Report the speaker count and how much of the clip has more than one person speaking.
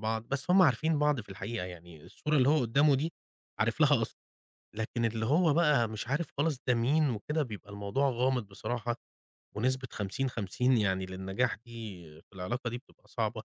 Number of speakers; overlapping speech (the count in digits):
1, no overlap